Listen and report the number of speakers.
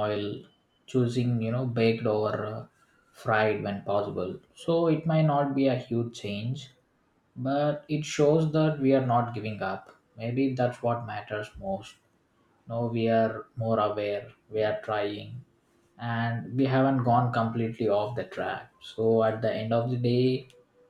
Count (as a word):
one